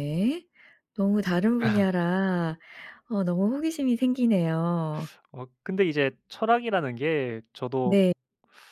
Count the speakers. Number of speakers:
2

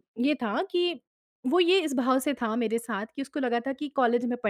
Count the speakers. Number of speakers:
1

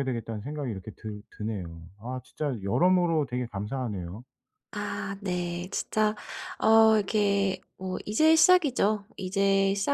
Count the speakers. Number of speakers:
2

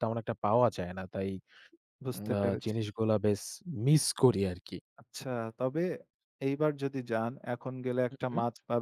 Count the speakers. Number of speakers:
2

